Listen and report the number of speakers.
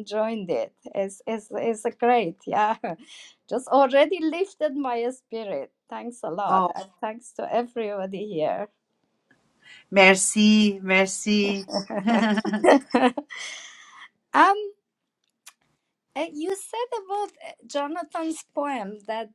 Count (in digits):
2